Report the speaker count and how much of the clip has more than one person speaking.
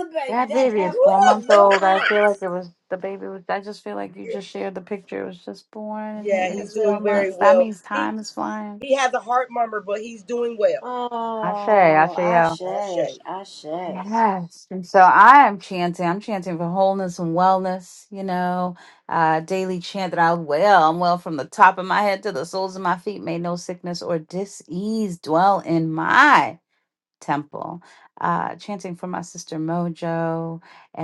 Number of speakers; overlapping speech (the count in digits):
3, about 16%